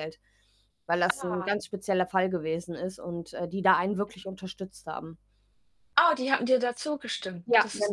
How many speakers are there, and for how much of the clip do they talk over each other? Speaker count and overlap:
2, about 10%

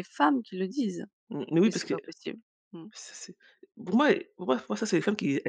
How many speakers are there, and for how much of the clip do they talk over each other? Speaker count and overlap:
2, about 6%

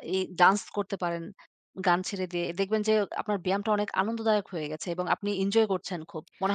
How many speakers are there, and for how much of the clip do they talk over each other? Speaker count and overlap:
1, no overlap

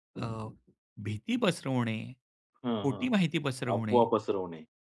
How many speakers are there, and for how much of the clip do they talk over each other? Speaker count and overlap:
2, about 13%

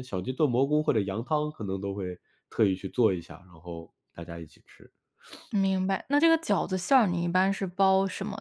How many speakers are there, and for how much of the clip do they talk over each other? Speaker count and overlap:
2, no overlap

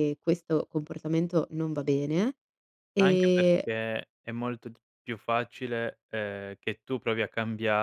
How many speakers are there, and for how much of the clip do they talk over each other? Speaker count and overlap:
2, about 9%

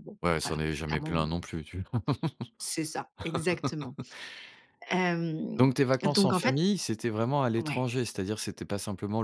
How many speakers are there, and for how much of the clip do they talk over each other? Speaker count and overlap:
2, about 22%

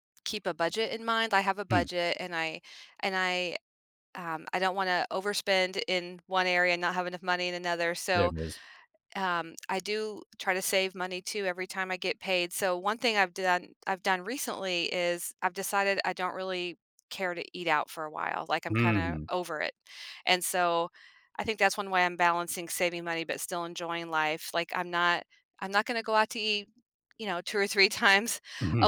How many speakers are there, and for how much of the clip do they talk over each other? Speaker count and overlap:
2, about 4%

